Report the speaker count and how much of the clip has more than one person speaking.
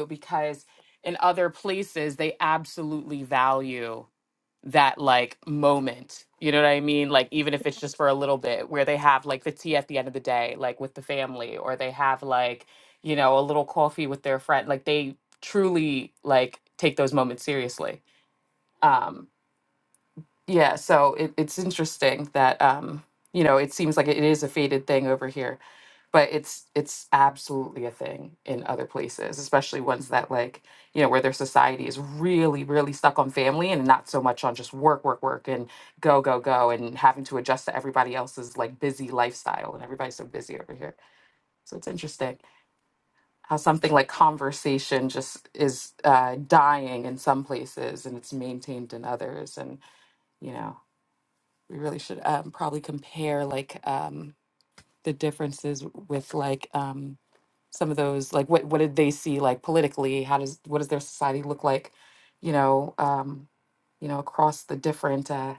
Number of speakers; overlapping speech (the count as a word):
one, no overlap